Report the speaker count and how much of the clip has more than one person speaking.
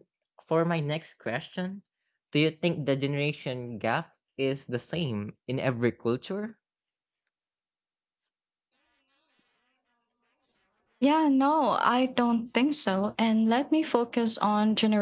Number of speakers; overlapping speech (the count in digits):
2, no overlap